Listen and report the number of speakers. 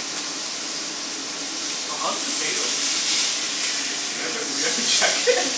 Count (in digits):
1